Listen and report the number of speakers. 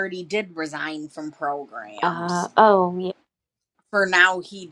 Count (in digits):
2